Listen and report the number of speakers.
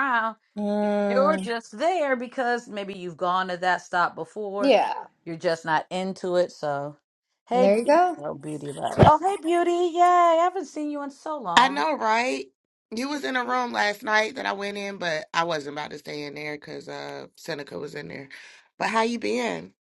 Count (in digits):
3